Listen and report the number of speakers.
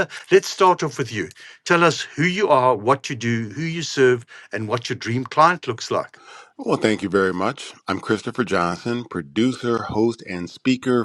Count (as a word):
two